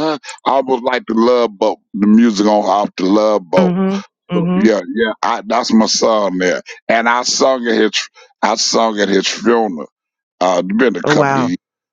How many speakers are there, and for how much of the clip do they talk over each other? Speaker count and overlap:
2, about 6%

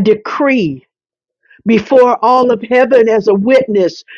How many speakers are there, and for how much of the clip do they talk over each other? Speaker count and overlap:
1, no overlap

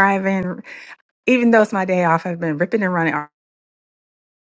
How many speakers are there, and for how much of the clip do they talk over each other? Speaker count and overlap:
1, no overlap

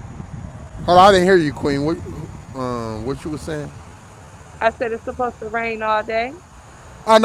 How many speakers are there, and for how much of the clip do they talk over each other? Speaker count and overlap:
2, no overlap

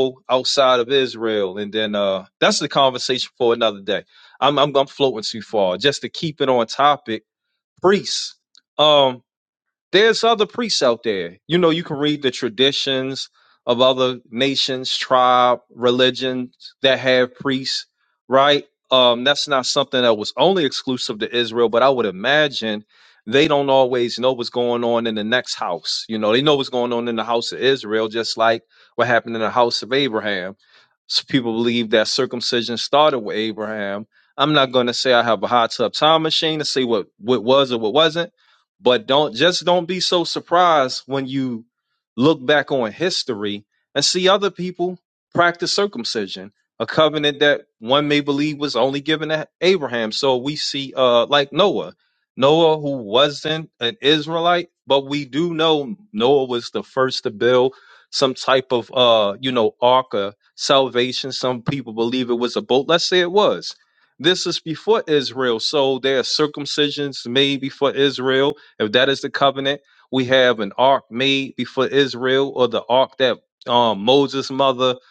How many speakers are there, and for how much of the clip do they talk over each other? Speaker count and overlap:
1, no overlap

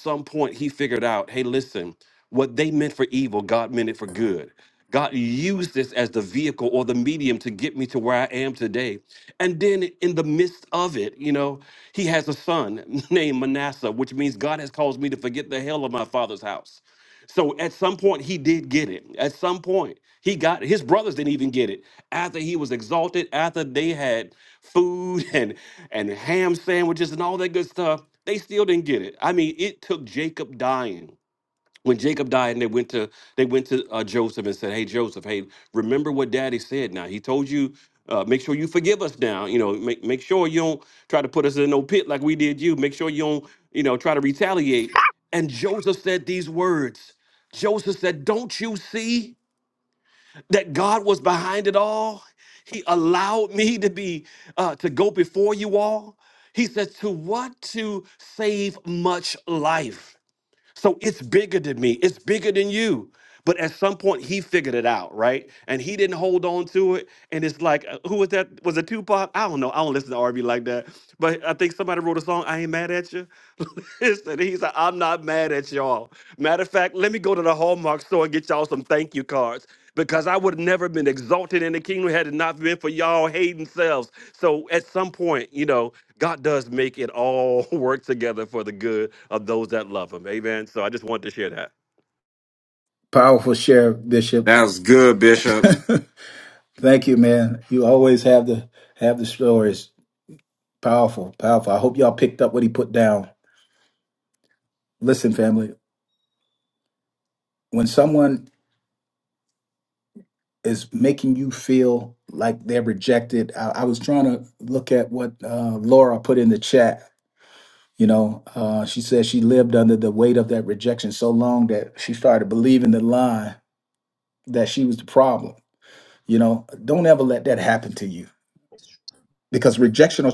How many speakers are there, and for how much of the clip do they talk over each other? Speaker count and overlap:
3, no overlap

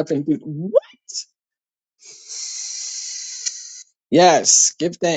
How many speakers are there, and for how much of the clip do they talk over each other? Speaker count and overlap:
1, no overlap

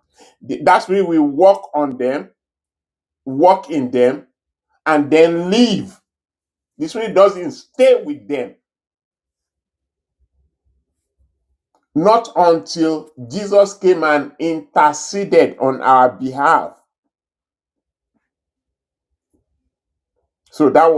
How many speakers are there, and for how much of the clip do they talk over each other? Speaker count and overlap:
1, no overlap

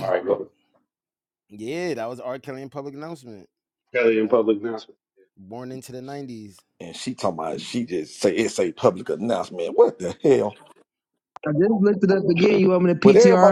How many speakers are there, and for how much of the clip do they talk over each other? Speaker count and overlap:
4, about 5%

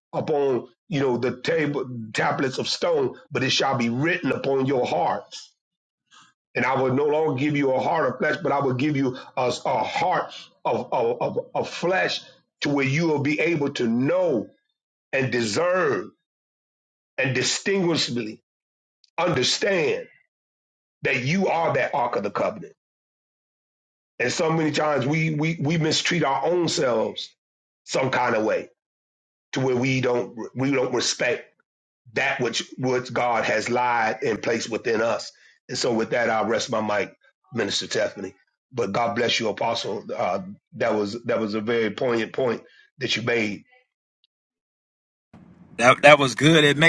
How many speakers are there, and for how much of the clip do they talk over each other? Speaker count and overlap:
2, no overlap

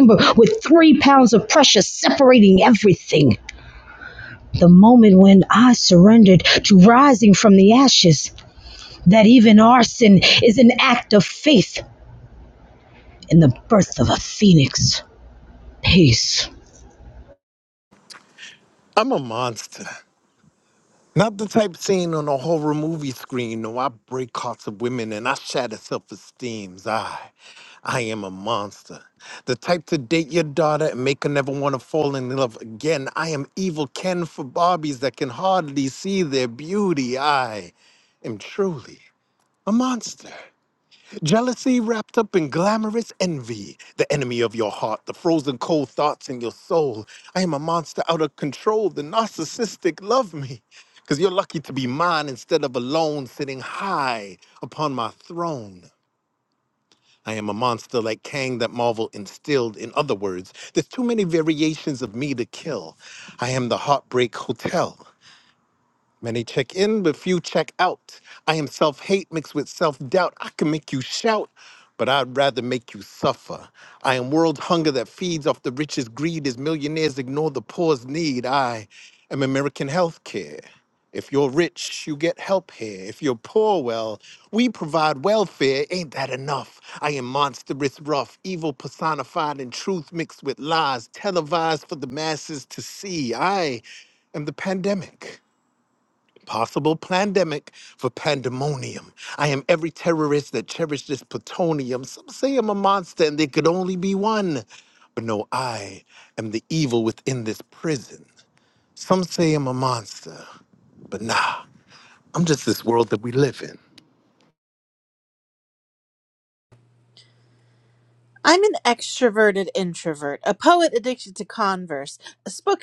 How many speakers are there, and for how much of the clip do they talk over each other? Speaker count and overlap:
3, no overlap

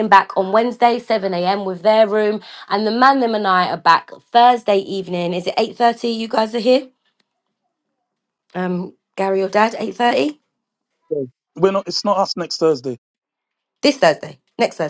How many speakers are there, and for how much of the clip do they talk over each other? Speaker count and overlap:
2, no overlap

